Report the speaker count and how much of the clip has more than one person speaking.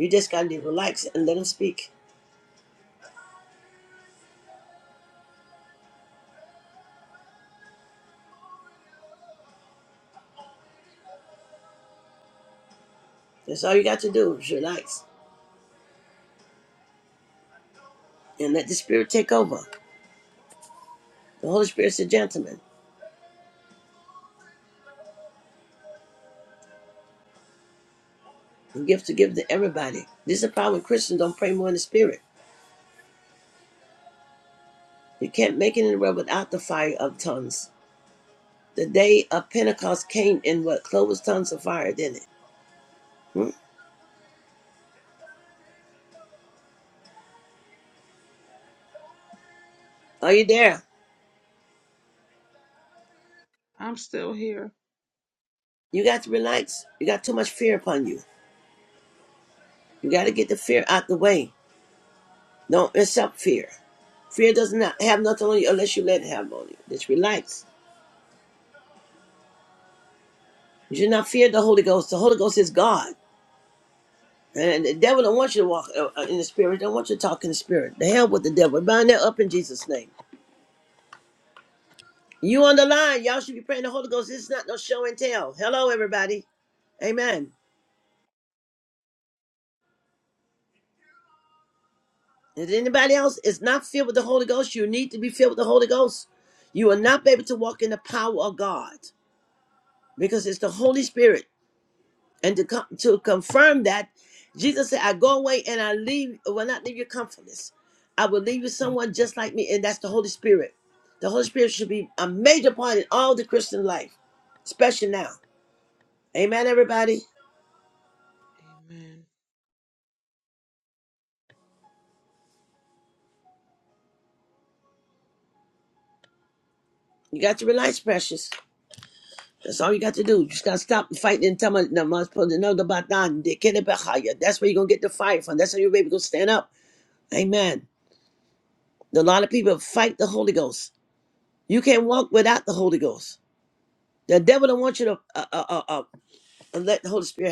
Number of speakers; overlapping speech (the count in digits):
2, no overlap